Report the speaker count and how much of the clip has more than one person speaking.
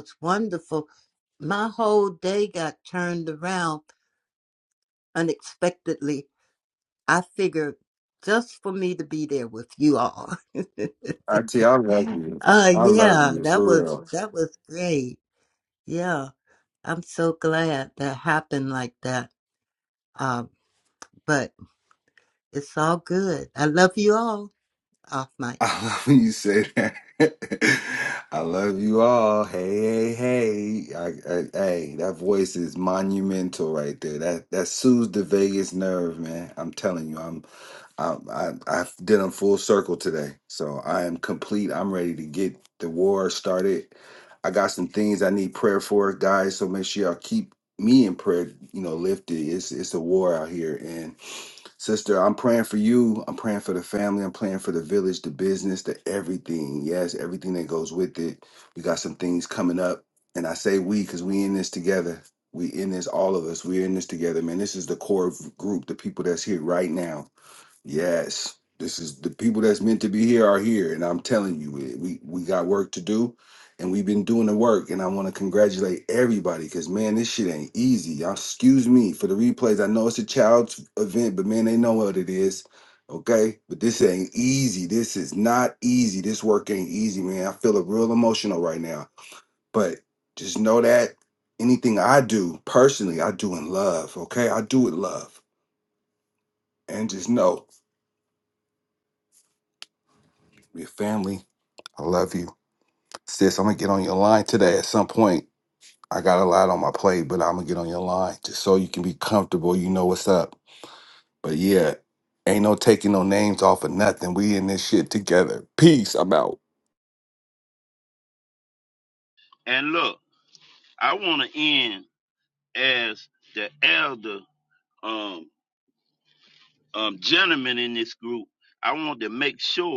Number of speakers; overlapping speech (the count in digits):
3, about 1%